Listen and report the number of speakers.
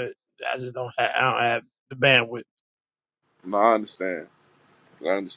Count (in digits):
2